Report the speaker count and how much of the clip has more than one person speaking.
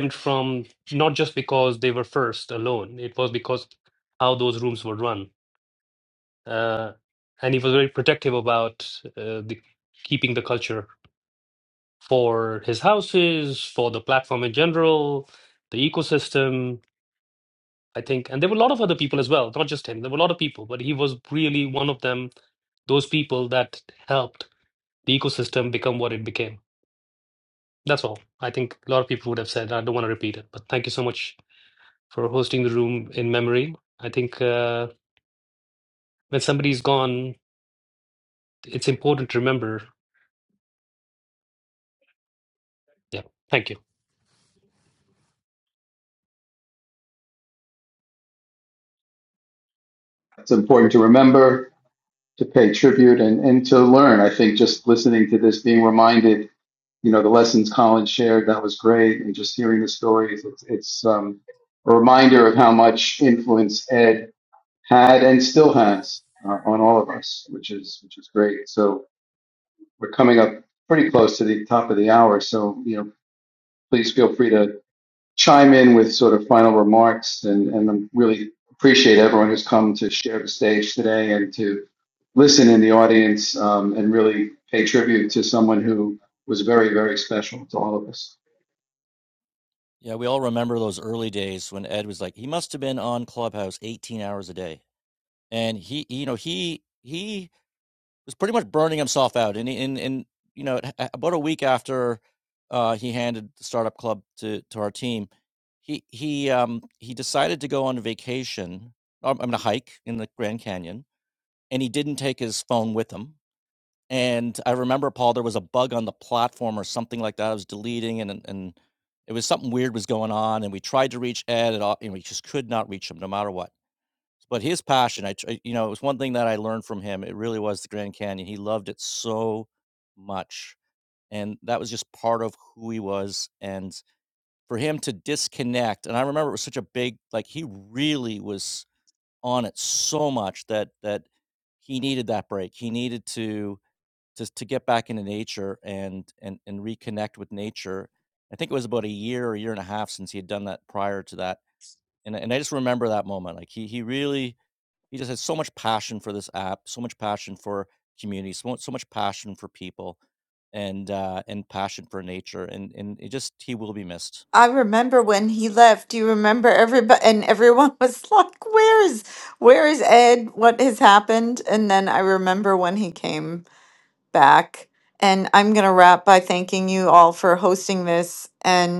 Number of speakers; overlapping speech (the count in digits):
4, no overlap